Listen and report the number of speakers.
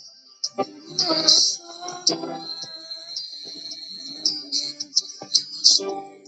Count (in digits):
0